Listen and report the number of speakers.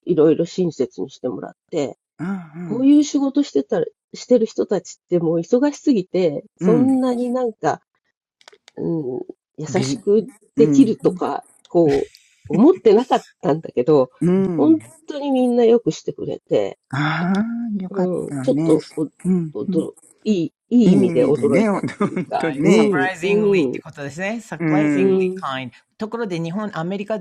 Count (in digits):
3